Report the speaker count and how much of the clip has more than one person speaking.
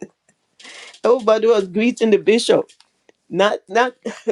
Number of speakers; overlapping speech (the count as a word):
one, no overlap